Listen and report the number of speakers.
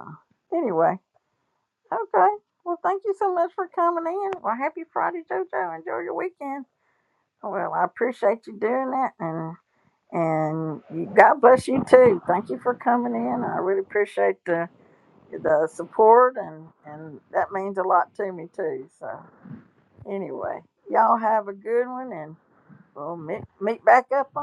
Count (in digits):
1